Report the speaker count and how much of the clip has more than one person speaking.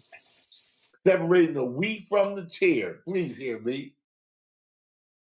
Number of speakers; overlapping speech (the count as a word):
one, no overlap